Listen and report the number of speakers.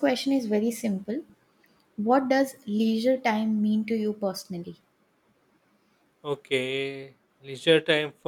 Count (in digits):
2